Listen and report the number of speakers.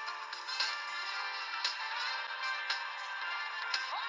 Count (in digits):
0